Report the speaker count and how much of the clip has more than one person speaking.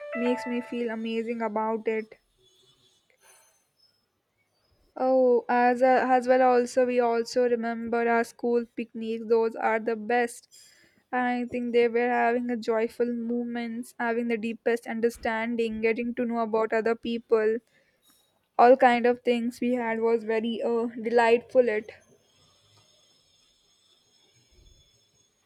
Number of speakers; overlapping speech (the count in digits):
1, no overlap